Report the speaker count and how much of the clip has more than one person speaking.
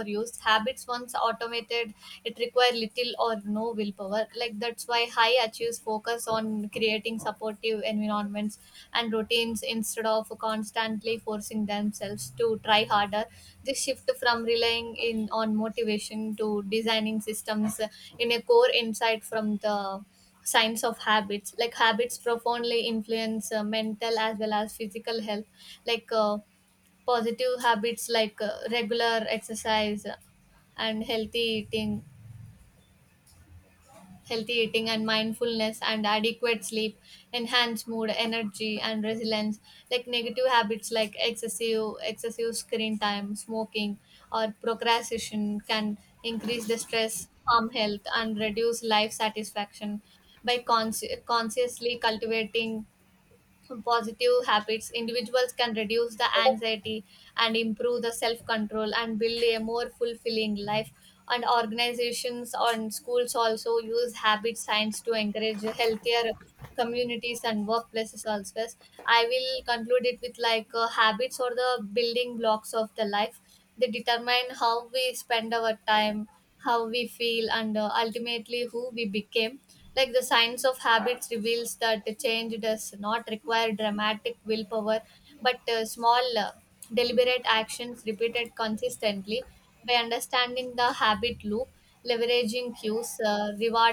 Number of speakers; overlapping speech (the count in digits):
1, no overlap